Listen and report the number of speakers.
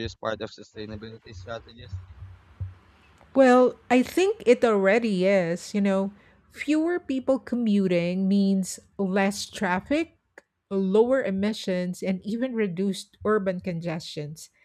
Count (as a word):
two